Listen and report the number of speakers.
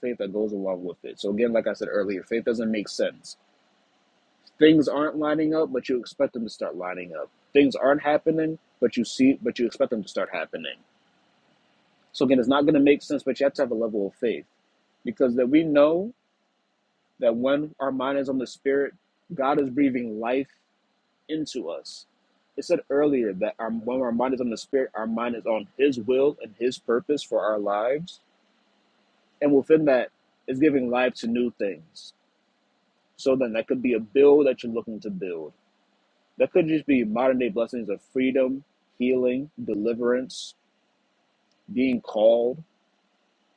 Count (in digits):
1